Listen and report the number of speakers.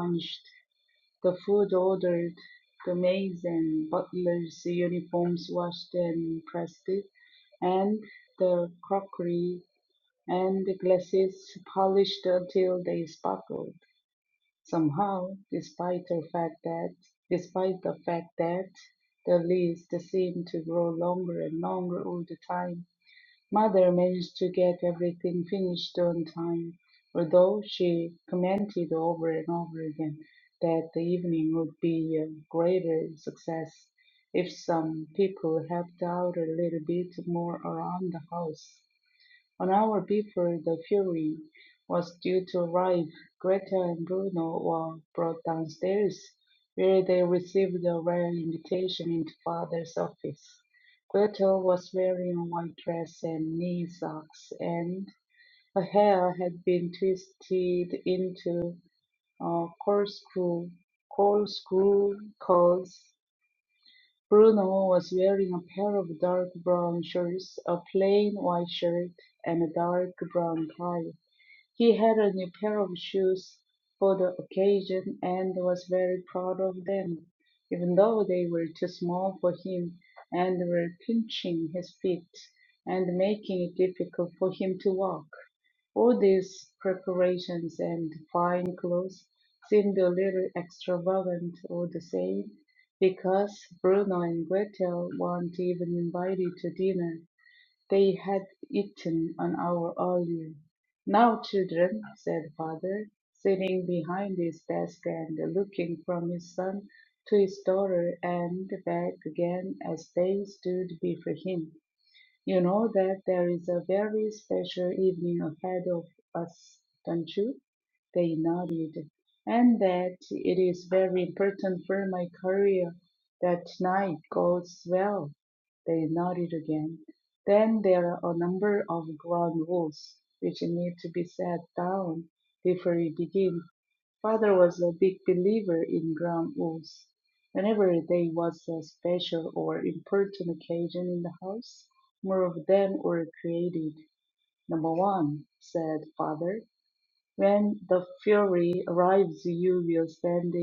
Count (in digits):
1